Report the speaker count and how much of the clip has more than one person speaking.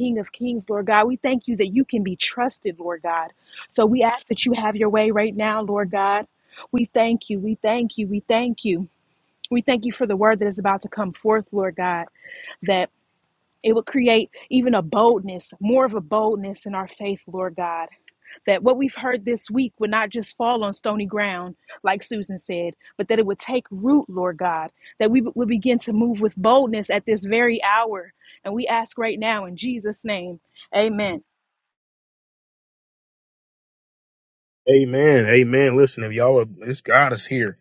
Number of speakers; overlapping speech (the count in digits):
2, no overlap